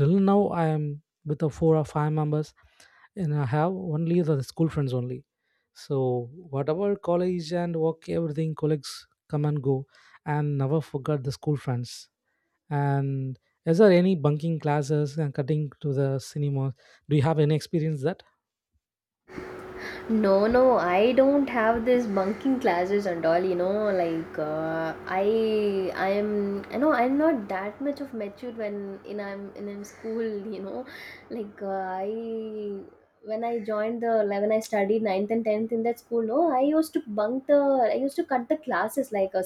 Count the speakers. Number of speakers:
2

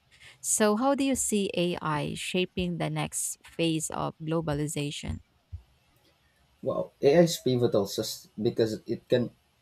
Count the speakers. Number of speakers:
2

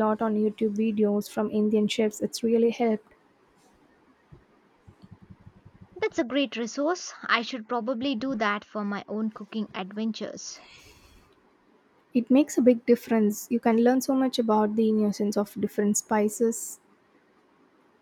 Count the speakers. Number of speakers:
2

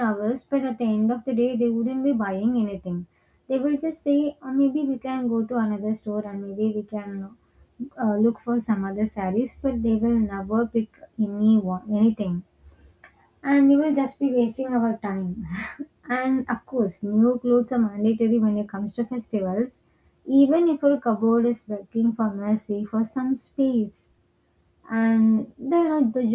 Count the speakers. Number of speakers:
1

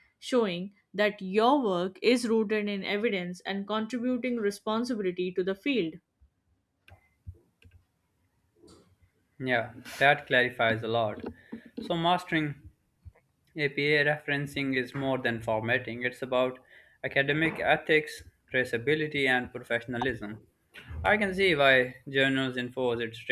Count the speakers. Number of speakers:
2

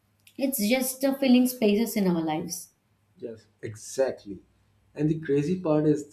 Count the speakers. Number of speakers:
2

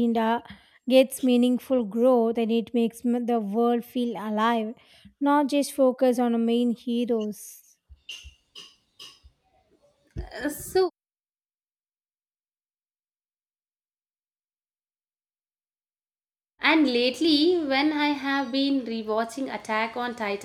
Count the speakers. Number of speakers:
2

